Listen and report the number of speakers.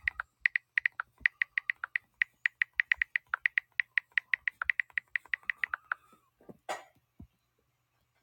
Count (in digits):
0